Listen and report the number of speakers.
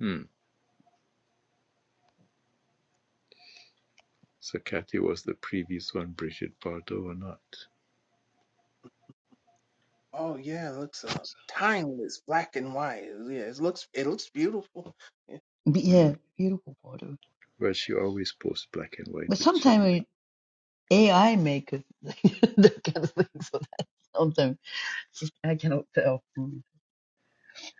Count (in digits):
3